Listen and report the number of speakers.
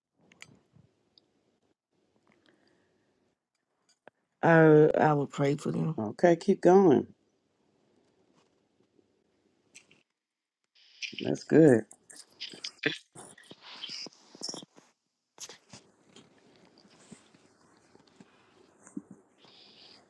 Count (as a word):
two